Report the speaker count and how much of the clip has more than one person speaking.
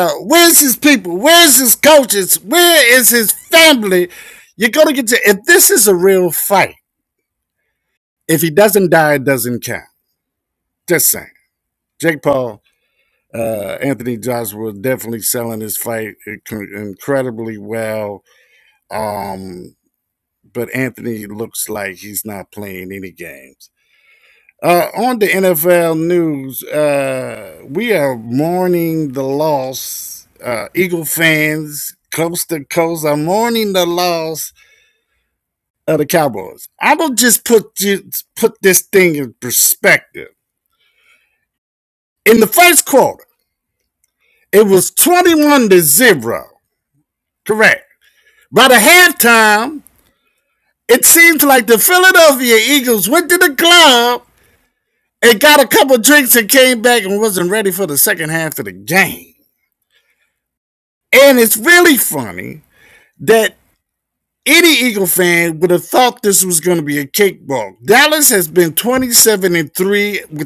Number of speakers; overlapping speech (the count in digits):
1, no overlap